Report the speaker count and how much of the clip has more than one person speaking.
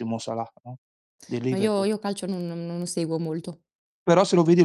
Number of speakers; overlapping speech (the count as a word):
two, about 7%